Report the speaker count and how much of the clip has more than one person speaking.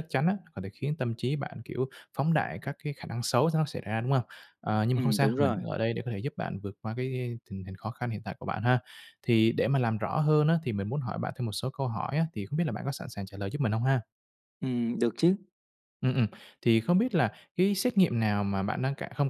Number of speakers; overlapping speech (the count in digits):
2, about 3%